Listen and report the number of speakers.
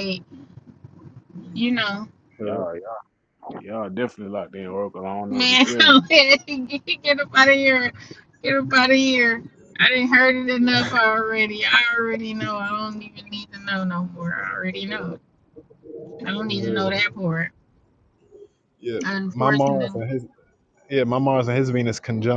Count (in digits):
3